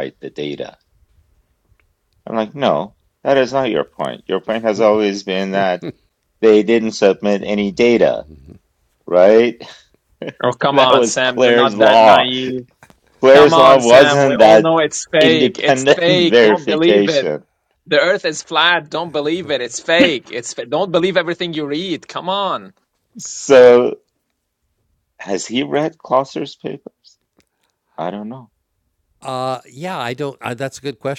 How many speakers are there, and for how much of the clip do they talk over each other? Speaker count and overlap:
three, about 15%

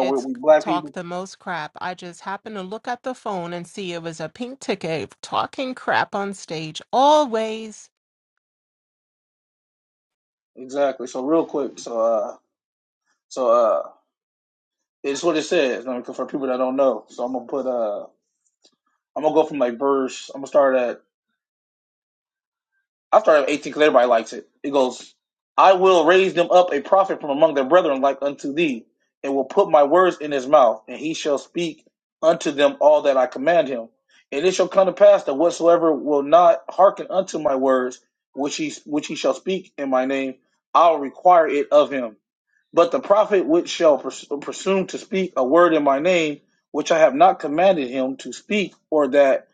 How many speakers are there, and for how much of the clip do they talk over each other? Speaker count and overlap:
two, about 1%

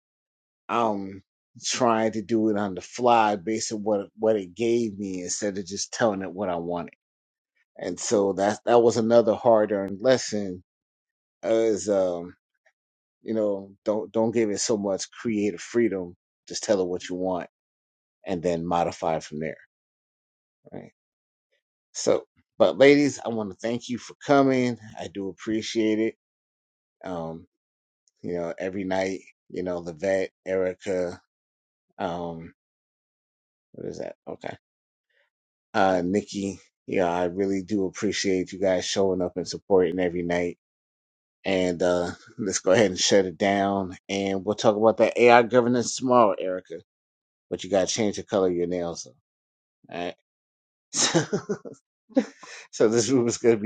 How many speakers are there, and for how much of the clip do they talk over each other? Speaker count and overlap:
one, no overlap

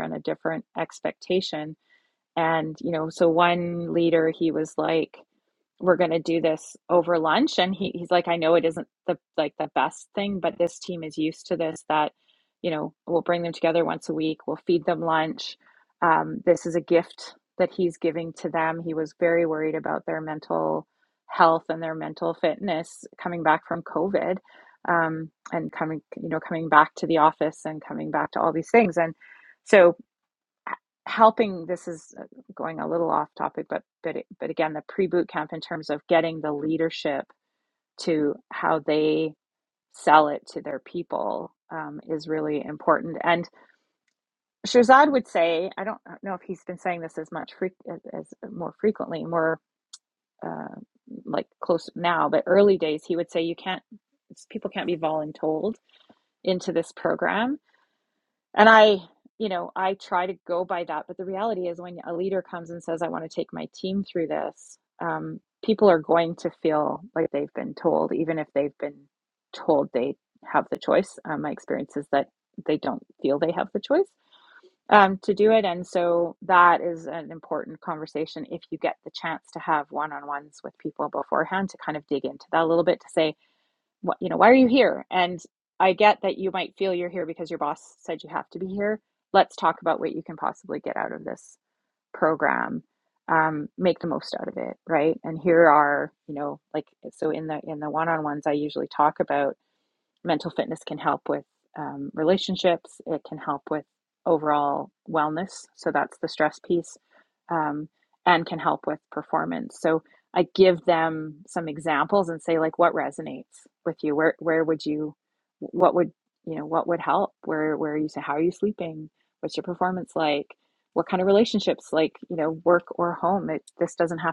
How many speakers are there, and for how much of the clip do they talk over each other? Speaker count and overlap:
one, no overlap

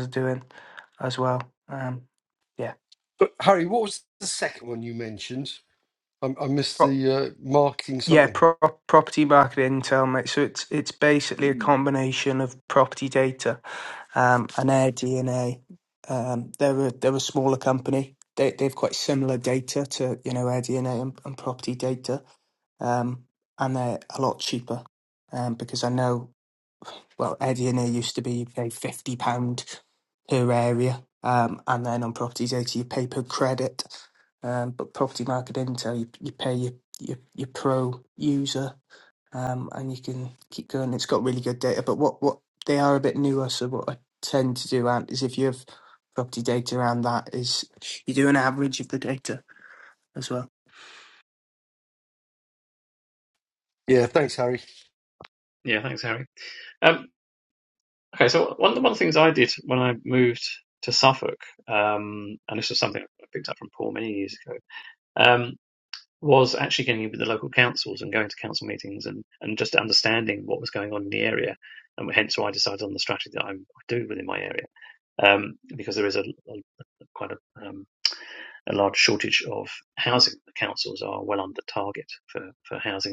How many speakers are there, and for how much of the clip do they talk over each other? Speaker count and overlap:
three, about 1%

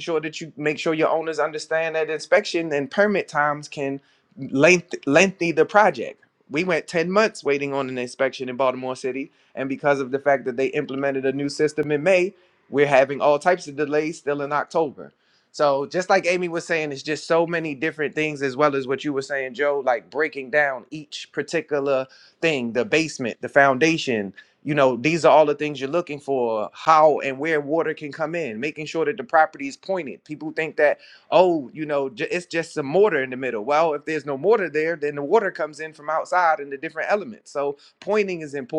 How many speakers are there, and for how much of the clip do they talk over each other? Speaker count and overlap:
one, no overlap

